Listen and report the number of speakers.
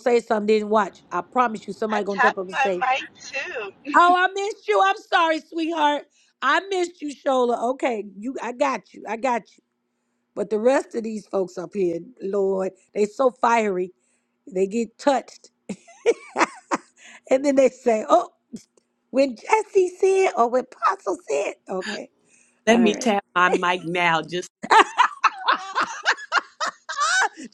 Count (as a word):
three